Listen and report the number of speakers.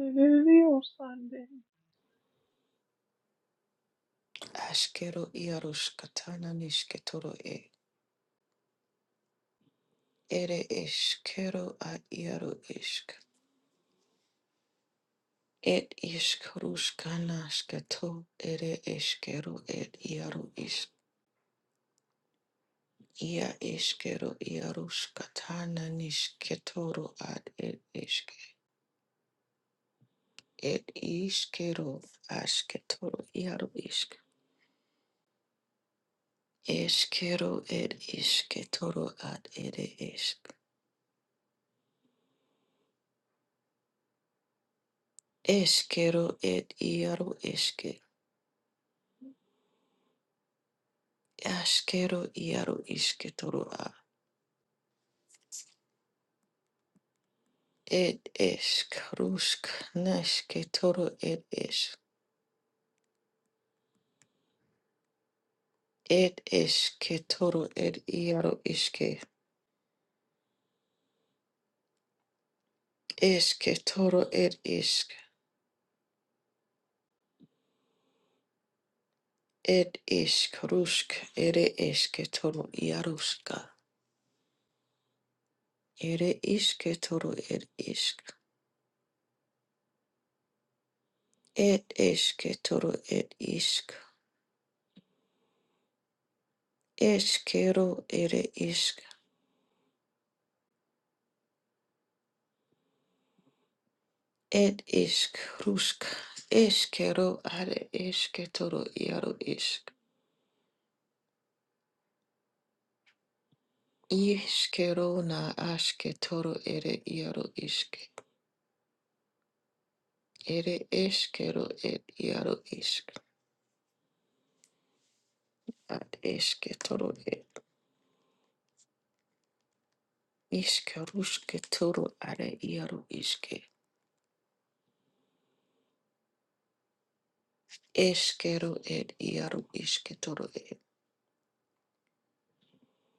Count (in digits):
2